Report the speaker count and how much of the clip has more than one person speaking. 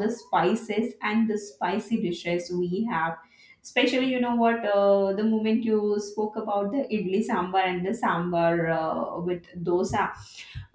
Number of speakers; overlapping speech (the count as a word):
one, no overlap